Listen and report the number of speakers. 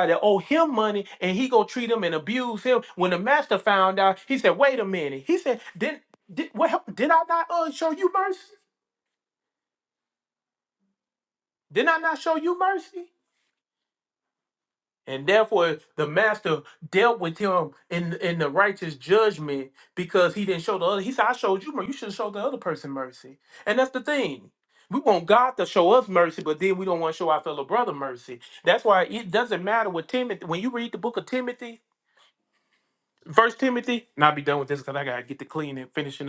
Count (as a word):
one